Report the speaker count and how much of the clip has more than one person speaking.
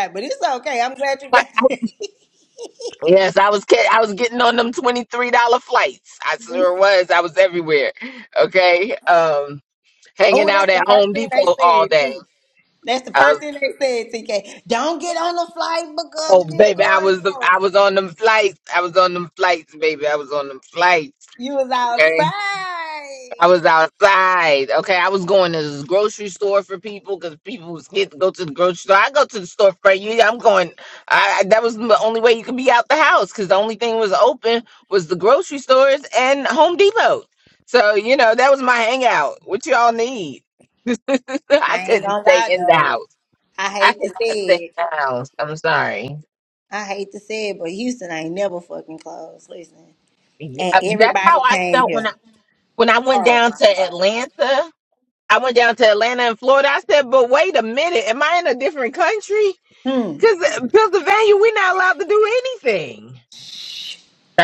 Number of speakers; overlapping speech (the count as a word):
two, about 13%